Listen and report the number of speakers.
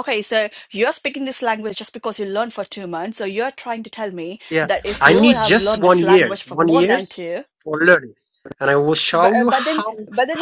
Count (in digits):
2